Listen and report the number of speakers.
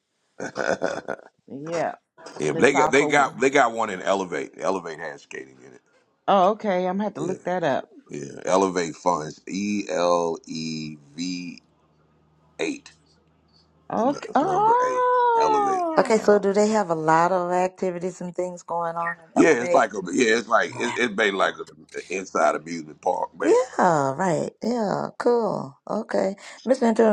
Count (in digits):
3